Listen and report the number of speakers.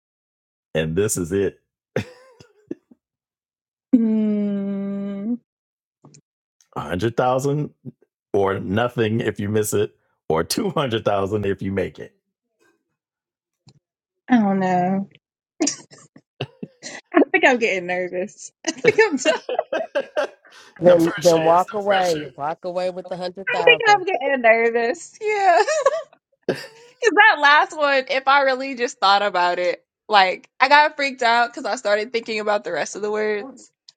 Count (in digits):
3